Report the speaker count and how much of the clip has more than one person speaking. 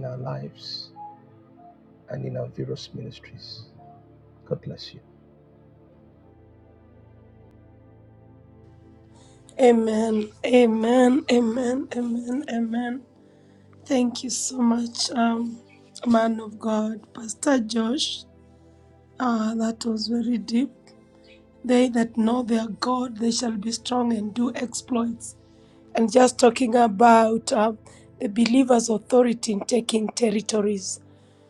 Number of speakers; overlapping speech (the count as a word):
two, no overlap